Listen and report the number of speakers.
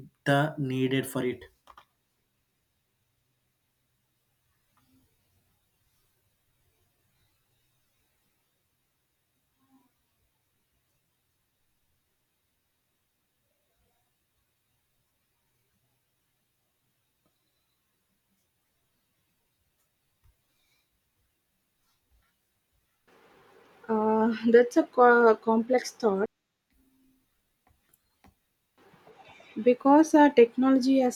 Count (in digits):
2